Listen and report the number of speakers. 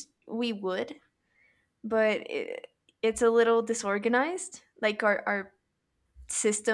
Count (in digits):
1